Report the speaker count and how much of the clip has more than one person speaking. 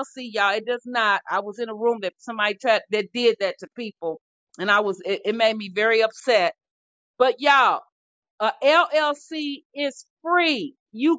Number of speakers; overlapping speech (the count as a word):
one, no overlap